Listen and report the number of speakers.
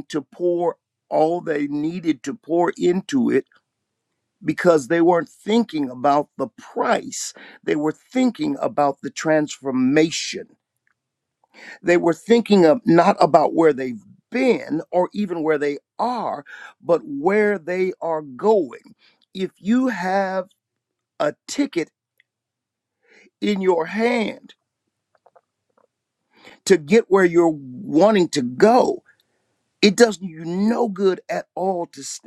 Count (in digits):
1